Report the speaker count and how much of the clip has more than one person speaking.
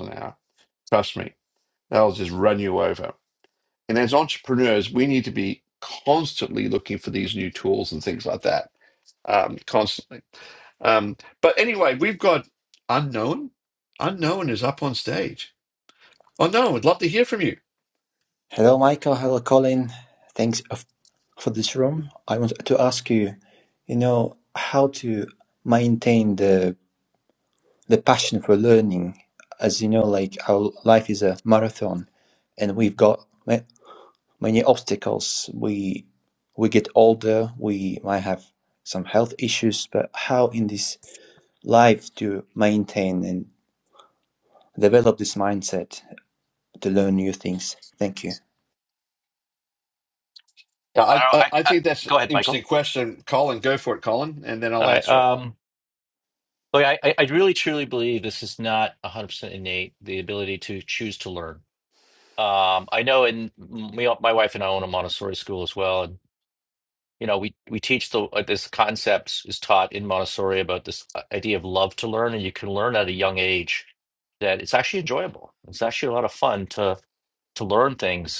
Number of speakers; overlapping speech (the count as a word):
three, about 3%